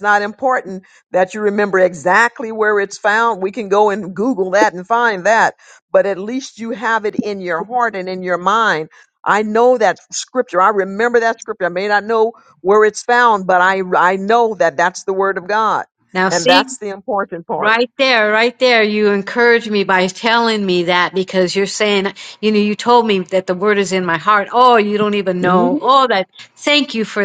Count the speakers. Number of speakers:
two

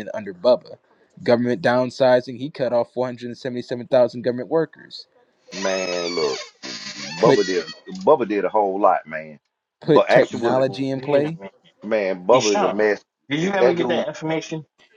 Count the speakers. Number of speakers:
three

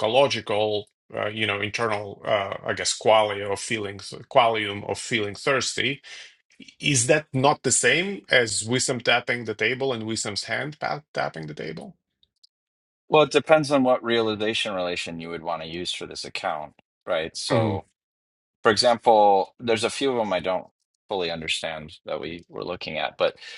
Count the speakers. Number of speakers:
two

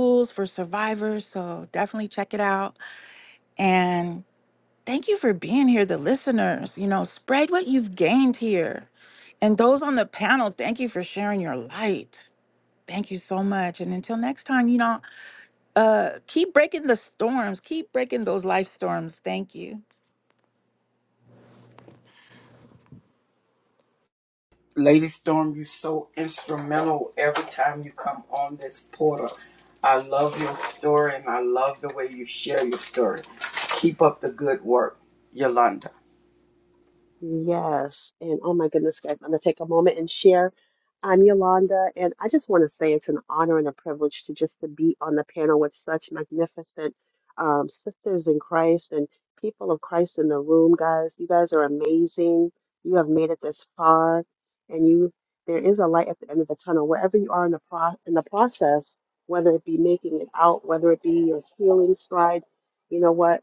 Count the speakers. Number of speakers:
three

